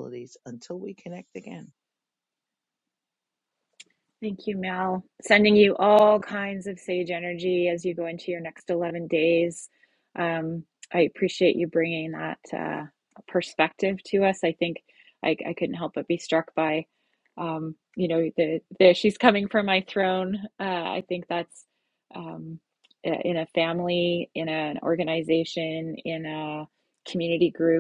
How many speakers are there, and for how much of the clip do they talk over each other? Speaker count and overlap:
2, no overlap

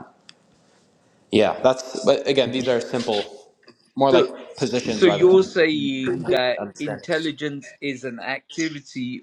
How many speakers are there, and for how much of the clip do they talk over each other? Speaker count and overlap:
2, about 17%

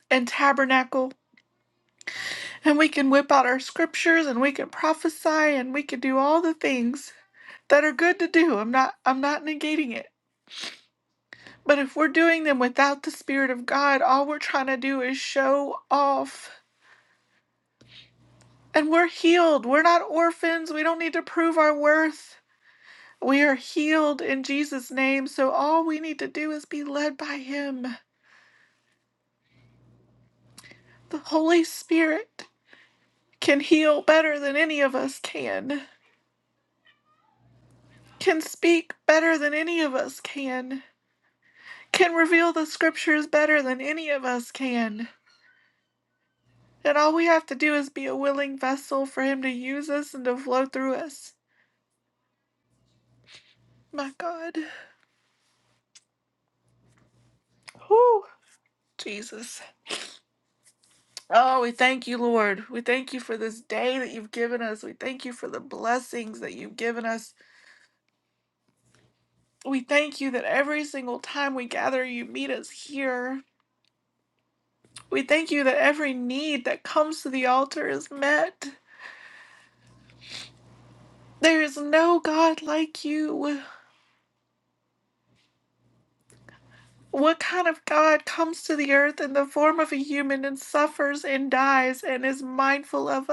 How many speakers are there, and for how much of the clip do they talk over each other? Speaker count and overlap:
1, no overlap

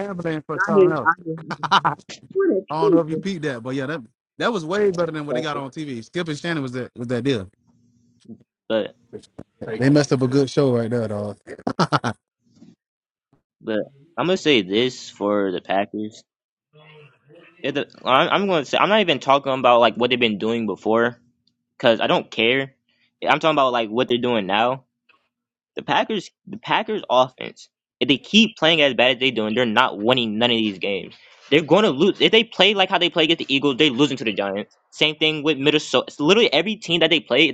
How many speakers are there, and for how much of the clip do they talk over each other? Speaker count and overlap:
3, about 4%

